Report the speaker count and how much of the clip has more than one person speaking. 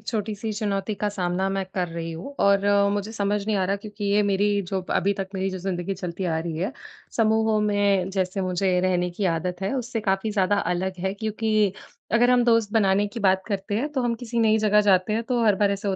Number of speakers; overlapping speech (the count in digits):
1, no overlap